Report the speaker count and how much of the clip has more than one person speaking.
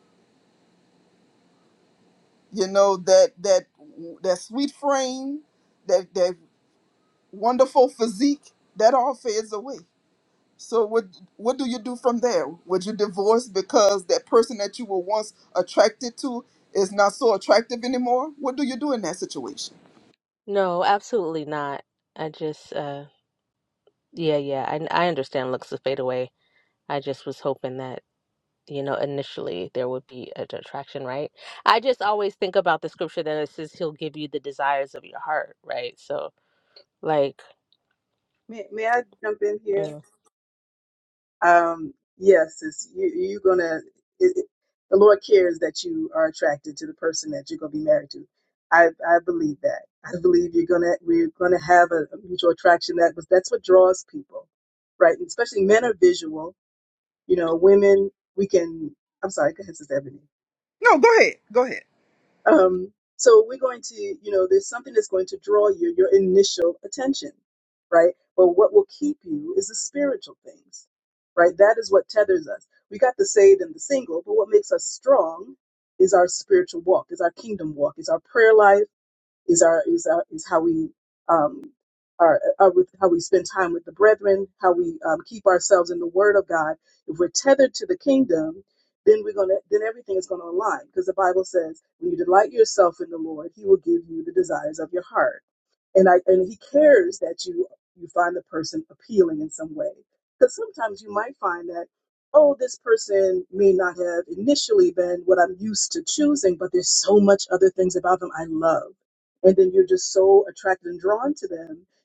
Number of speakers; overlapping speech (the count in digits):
3, under 1%